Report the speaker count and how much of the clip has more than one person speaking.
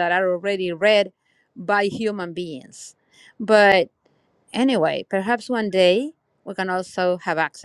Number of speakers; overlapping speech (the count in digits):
1, no overlap